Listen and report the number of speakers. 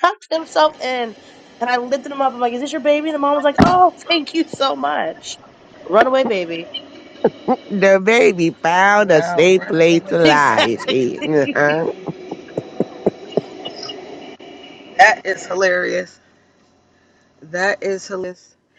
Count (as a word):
three